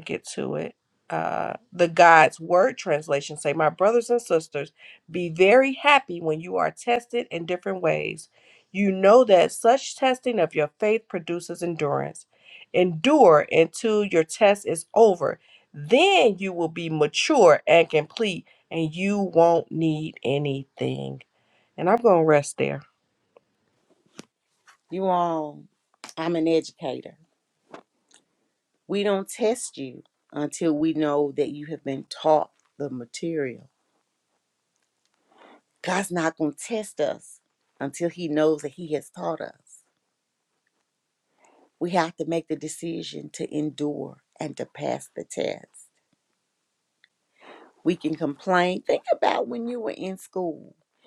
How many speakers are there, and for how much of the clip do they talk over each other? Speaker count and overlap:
2, no overlap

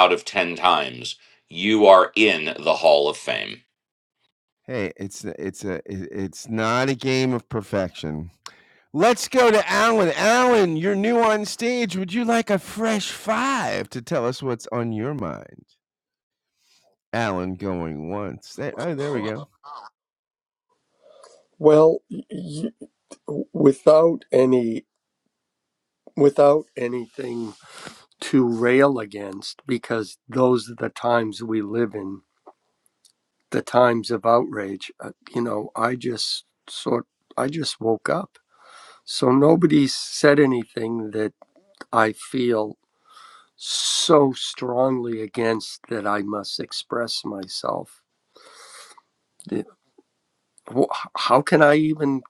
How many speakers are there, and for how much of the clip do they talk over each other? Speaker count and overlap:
3, no overlap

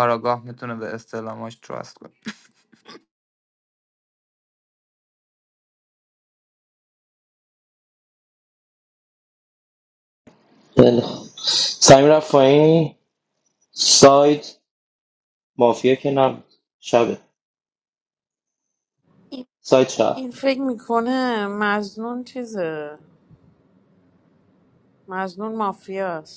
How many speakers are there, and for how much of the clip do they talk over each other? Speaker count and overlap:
3, under 1%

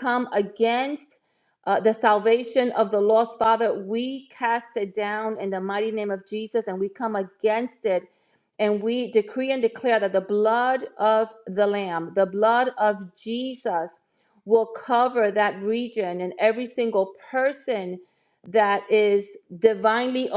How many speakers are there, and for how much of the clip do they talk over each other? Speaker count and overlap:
1, no overlap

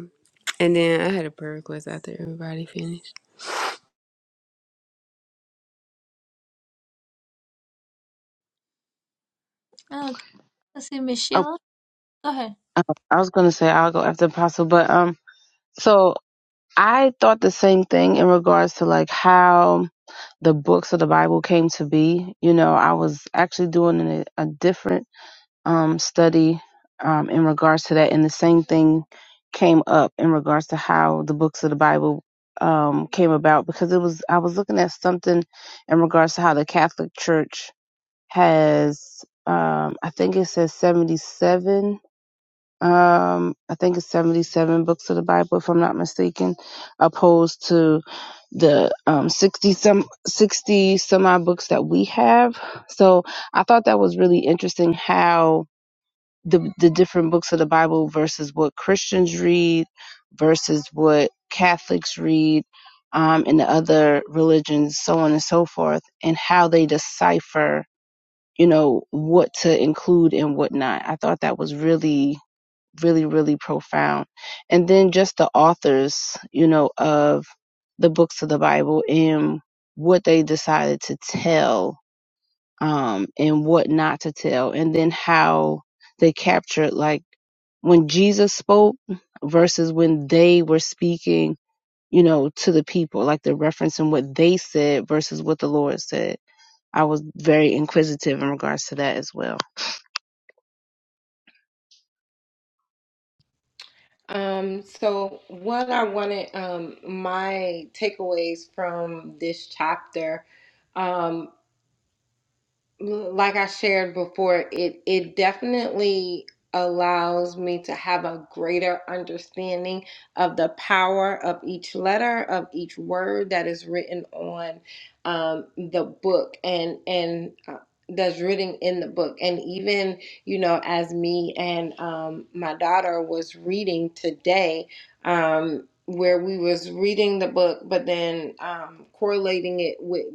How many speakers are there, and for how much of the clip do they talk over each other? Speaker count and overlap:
4, under 1%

